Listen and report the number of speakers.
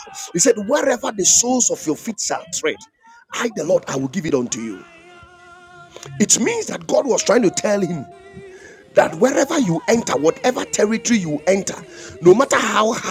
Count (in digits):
1